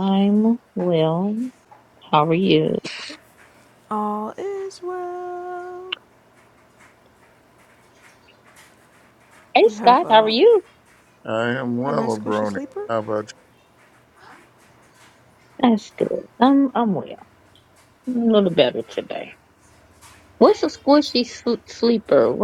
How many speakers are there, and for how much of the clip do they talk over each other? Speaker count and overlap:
3, about 9%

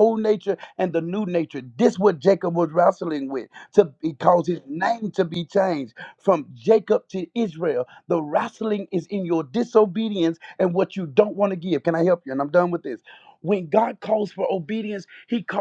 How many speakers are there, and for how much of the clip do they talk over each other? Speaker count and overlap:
1, no overlap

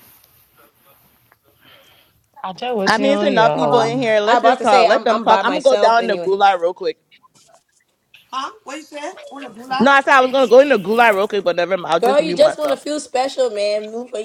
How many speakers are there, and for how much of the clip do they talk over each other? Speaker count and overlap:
4, about 29%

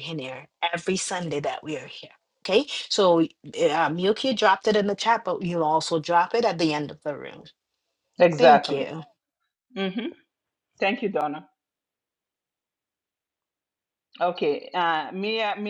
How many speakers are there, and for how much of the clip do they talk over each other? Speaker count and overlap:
2, about 3%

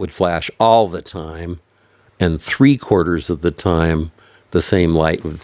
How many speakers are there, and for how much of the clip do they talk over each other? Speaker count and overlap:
1, no overlap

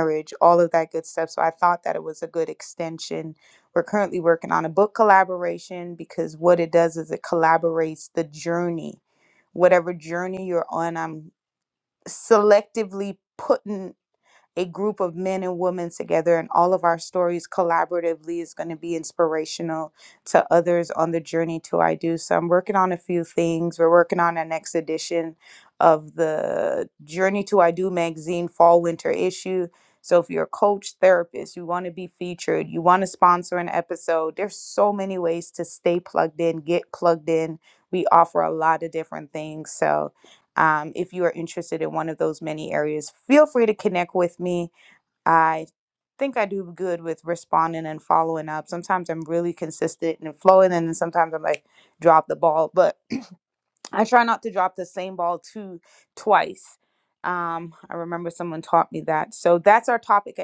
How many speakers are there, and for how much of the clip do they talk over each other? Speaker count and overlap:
1, no overlap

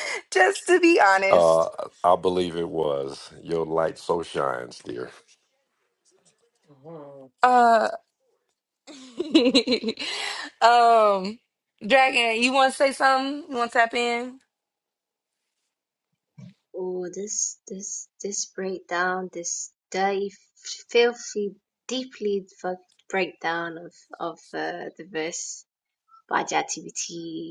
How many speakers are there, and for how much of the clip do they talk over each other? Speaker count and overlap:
3, under 1%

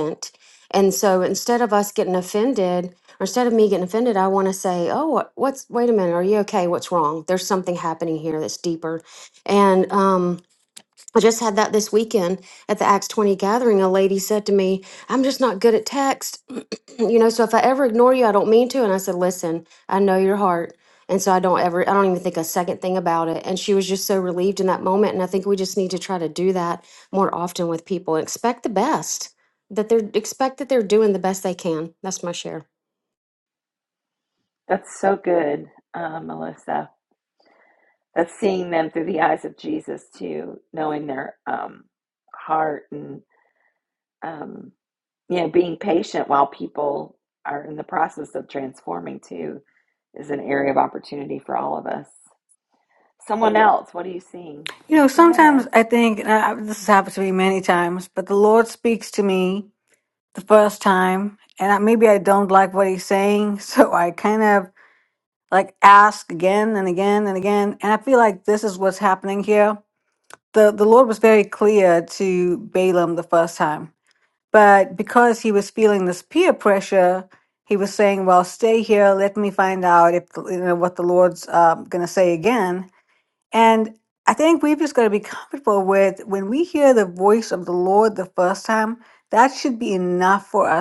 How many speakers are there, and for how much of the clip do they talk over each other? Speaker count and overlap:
3, about 1%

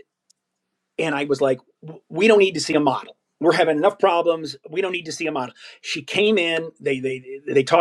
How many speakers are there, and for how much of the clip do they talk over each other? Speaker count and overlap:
1, no overlap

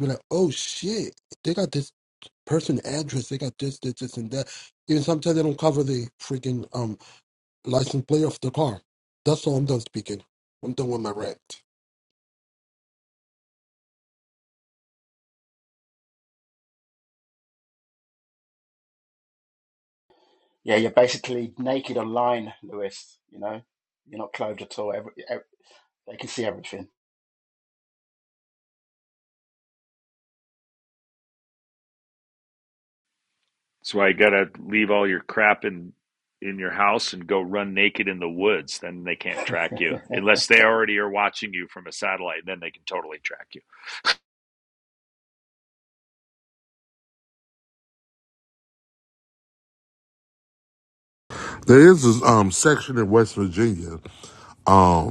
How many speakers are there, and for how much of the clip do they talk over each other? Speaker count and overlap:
4, no overlap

